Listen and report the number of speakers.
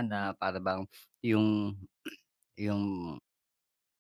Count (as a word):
one